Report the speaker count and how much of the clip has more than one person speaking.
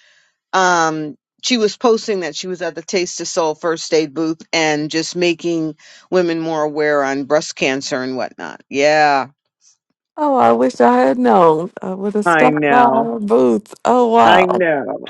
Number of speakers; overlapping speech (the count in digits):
2, about 8%